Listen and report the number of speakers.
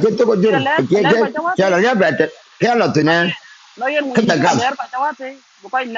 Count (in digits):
2